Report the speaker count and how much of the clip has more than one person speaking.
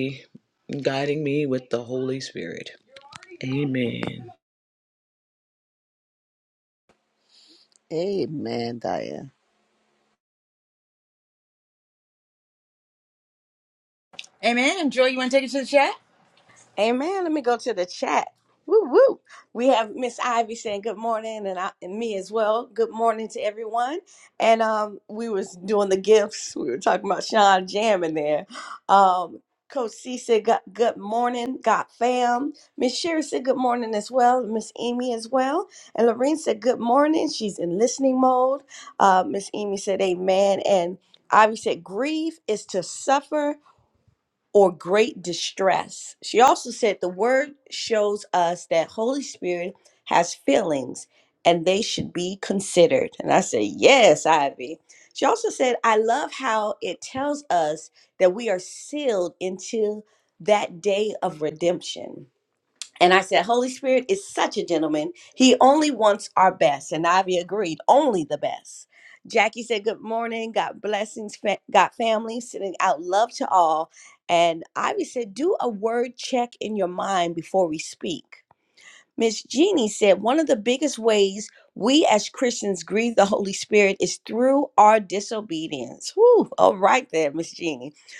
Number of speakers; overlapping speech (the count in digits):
4, no overlap